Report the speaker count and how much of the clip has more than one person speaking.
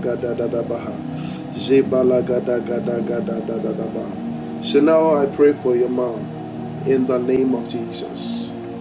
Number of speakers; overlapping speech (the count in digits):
1, no overlap